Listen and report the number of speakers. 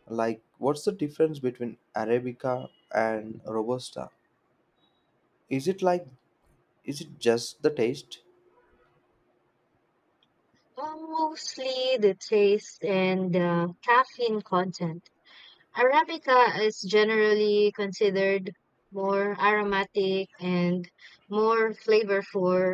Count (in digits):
2